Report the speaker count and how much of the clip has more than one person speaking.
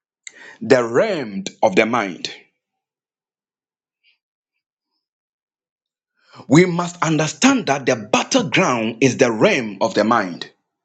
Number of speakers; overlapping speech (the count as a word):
one, no overlap